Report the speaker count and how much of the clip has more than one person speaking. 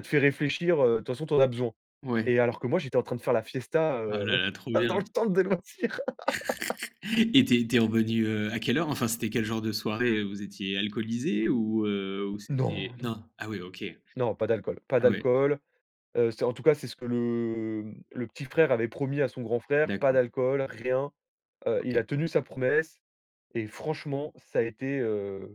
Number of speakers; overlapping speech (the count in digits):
2, about 6%